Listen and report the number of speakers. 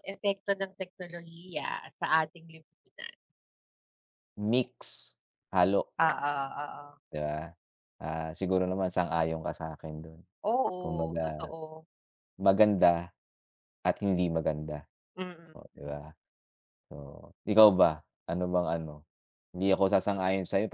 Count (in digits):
2